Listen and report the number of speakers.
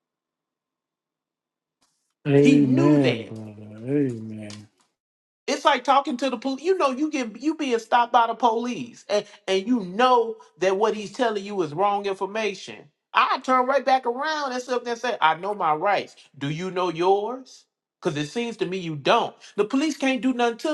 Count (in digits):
2